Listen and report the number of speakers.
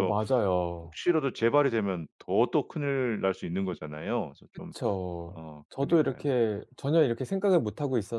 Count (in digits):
2